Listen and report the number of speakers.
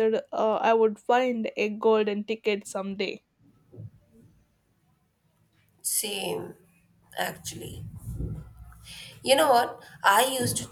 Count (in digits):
2